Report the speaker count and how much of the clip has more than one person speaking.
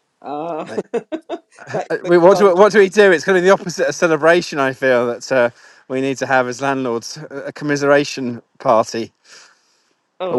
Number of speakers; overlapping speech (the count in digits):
2, about 7%